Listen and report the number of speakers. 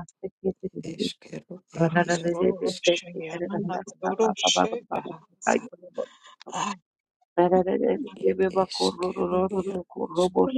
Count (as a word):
three